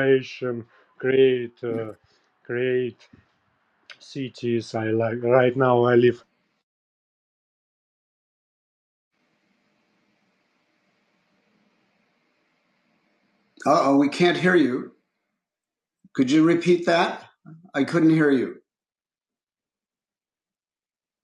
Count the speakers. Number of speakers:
2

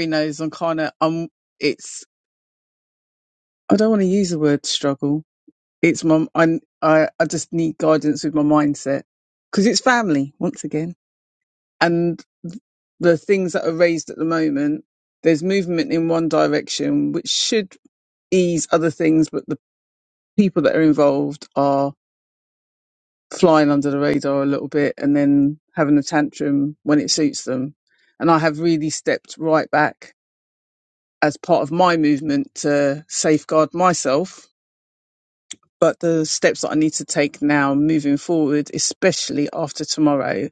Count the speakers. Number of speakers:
1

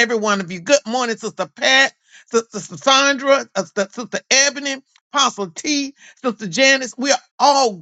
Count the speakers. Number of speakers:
1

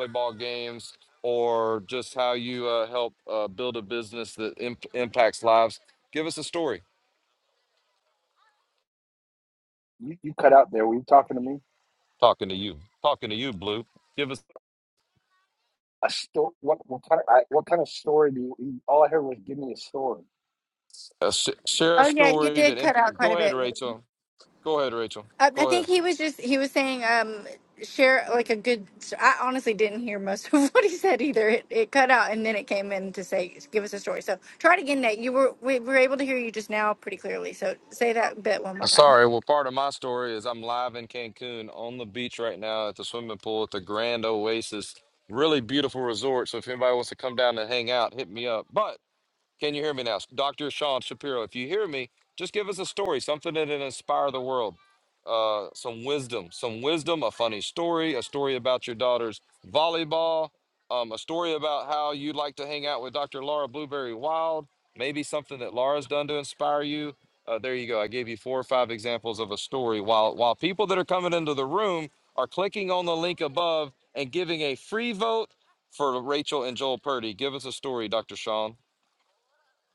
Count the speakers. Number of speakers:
3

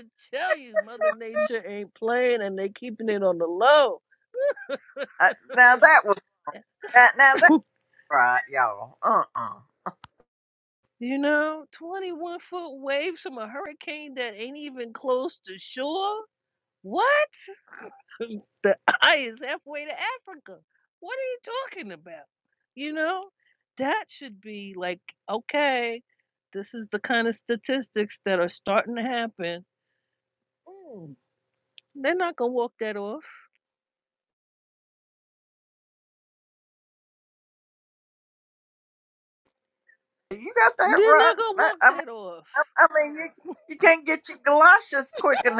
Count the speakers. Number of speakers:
2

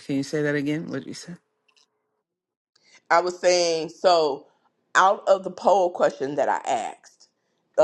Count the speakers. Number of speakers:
2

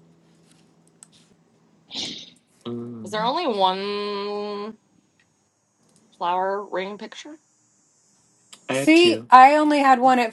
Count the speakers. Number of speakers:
3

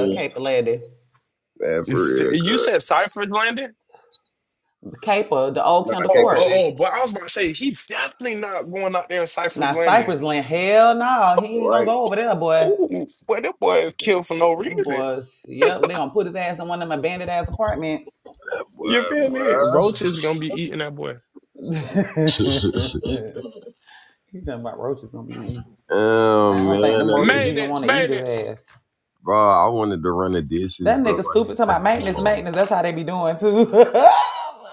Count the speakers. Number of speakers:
3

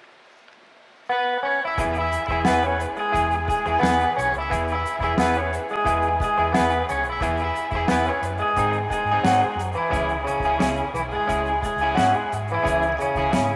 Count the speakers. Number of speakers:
0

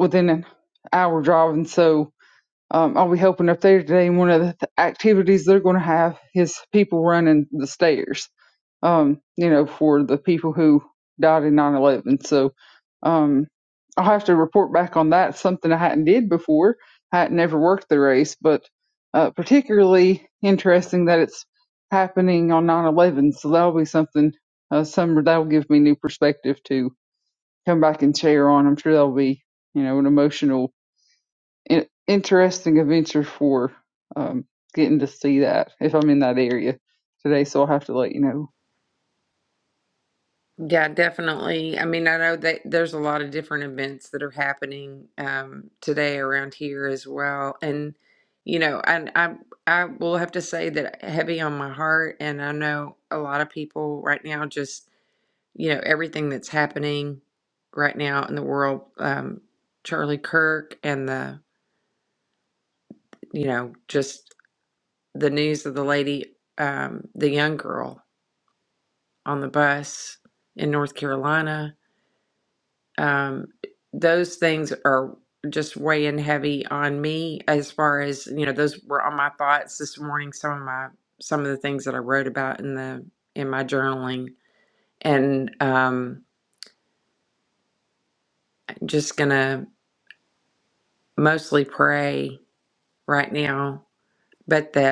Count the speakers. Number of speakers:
2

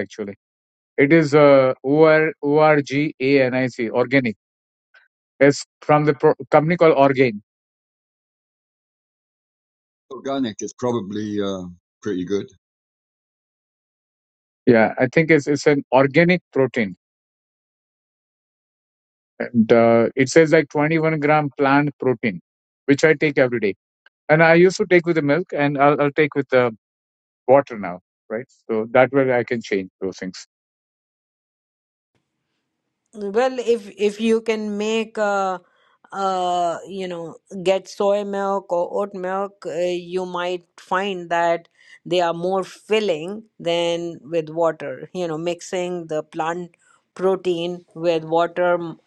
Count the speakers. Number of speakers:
3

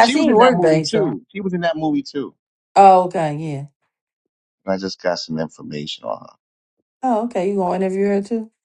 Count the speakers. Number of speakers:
2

